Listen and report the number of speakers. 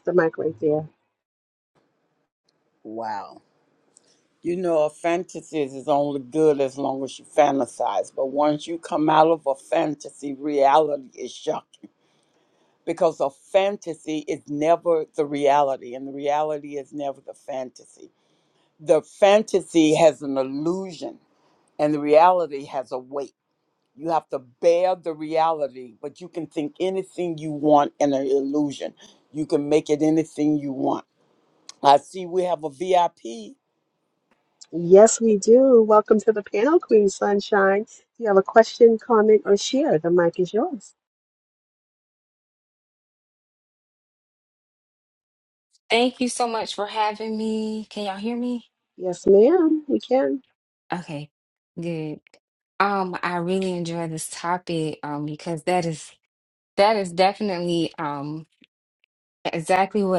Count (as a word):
three